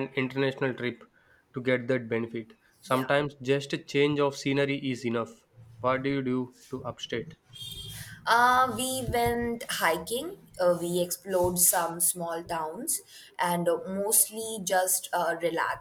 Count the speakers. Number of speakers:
two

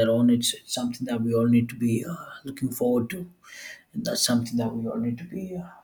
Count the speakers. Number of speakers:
one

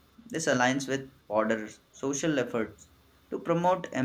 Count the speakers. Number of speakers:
one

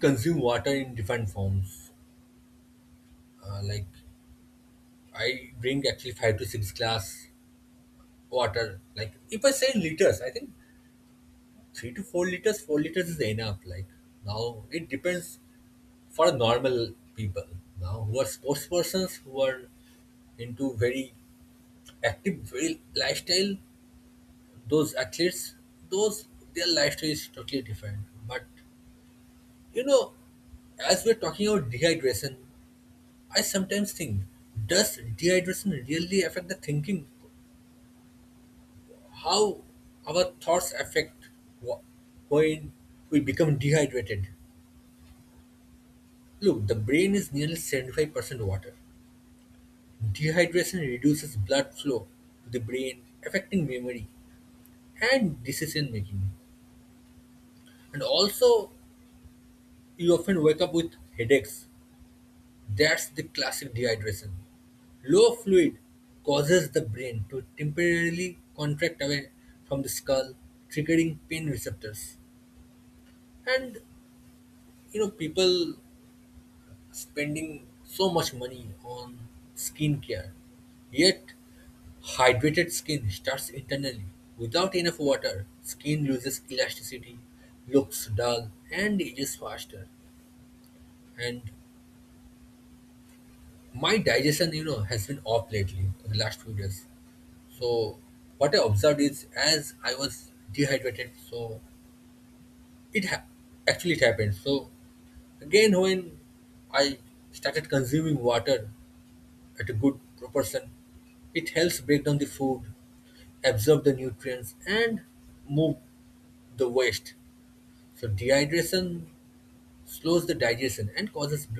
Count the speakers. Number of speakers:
one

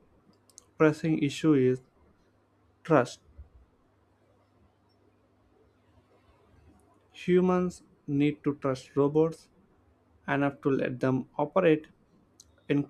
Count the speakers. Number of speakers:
one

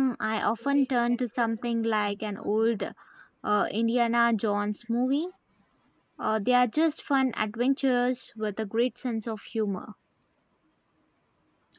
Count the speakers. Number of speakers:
one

